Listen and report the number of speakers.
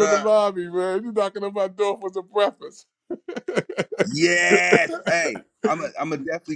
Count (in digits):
2